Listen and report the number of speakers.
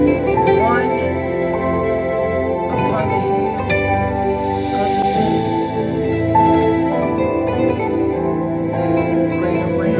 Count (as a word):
one